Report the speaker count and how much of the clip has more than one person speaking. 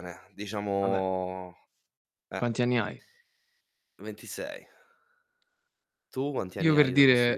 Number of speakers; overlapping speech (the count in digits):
2, about 15%